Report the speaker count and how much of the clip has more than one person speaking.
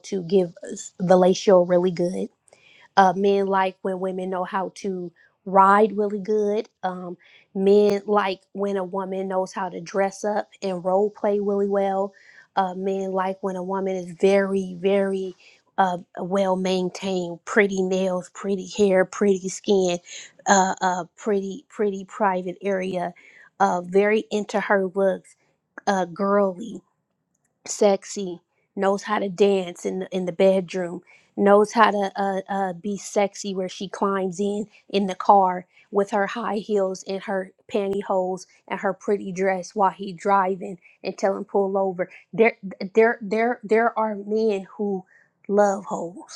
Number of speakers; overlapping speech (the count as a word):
one, no overlap